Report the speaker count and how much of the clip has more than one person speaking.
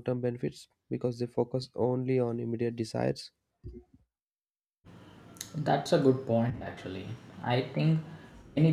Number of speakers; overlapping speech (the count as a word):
two, no overlap